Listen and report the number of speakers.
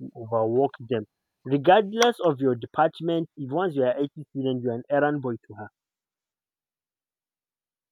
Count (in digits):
1